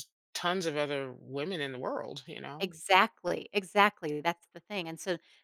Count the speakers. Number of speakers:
two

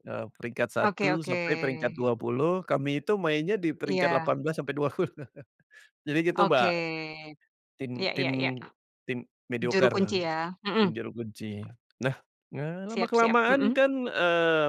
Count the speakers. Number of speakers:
two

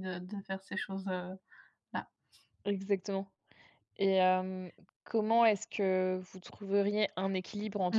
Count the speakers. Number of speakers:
two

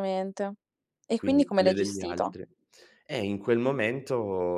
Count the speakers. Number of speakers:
two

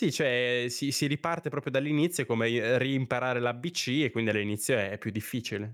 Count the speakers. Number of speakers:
one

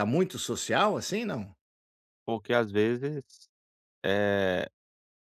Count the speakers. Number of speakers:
two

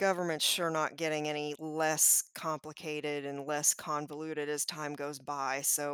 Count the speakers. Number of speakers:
one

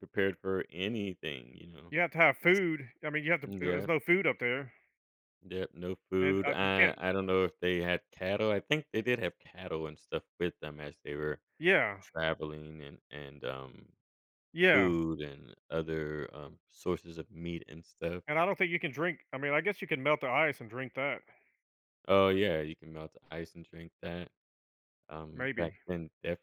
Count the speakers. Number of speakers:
two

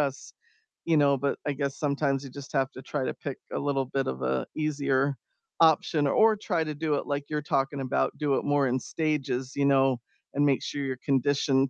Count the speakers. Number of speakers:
one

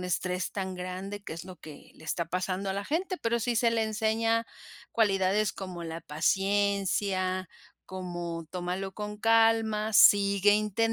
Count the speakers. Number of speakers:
one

